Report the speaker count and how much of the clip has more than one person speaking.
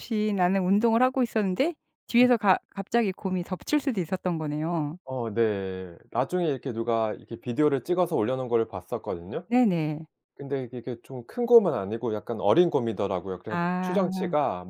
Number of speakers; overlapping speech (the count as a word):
two, about 4%